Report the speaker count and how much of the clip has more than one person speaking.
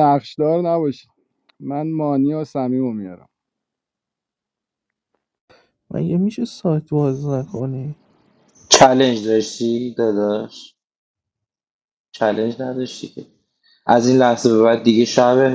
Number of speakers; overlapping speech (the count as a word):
three, no overlap